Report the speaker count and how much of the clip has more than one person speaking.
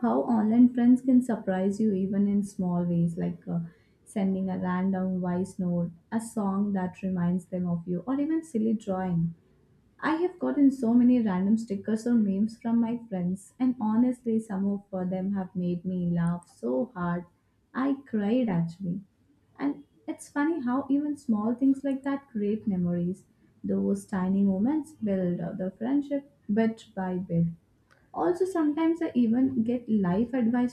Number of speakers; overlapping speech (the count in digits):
1, no overlap